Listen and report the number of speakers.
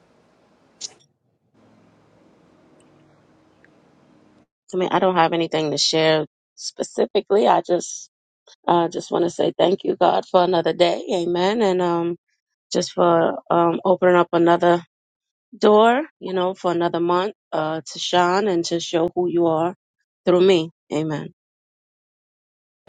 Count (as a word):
one